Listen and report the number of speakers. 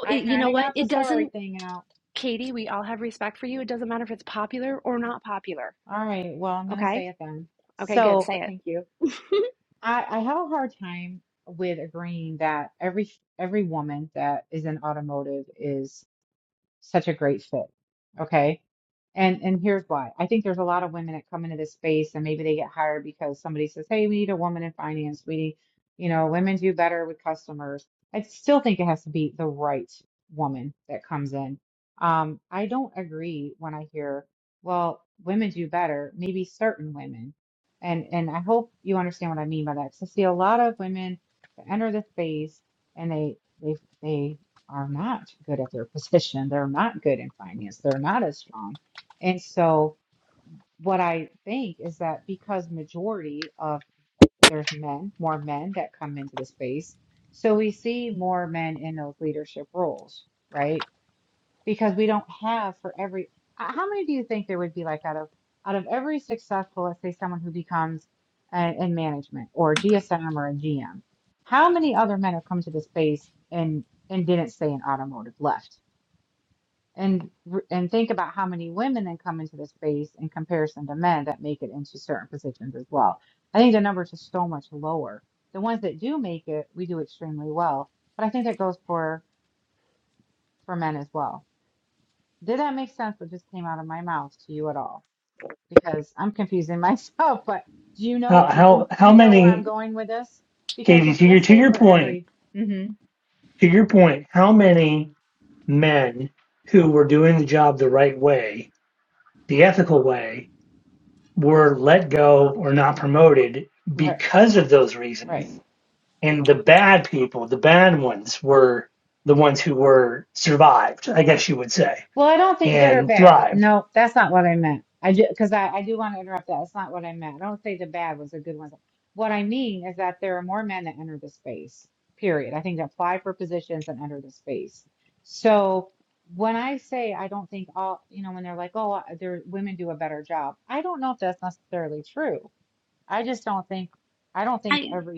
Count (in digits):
3